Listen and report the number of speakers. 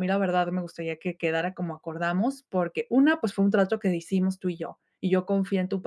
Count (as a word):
one